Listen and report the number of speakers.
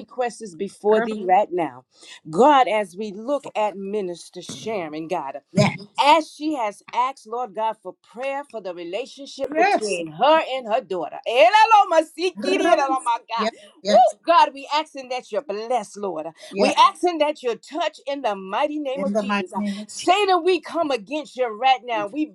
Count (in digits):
2